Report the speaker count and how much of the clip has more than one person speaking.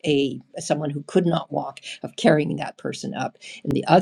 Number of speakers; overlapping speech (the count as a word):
one, no overlap